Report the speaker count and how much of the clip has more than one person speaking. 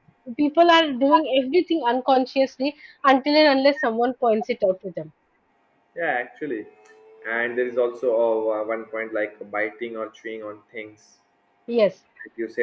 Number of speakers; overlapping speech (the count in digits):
2, no overlap